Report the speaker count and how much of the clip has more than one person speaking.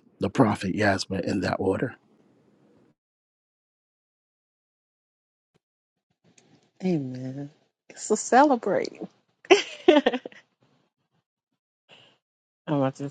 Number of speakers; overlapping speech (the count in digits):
2, no overlap